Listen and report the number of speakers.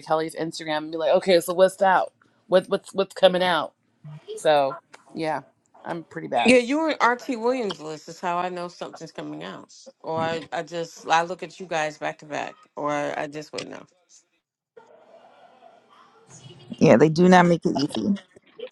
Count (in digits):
3